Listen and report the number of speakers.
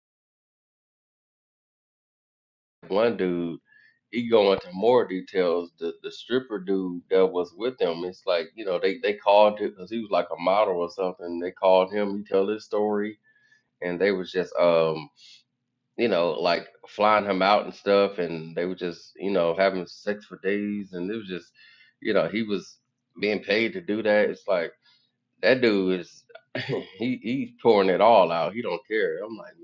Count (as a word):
one